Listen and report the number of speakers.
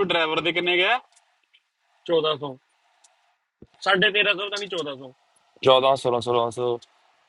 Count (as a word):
three